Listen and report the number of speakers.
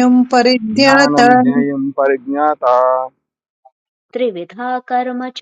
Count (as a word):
three